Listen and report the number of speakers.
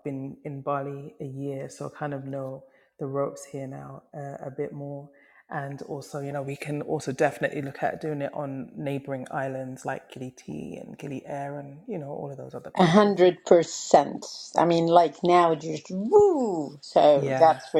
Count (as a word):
two